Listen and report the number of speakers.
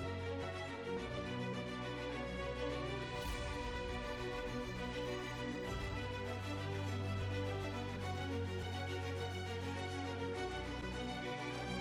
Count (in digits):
0